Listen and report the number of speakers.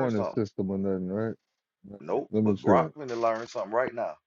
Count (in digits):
2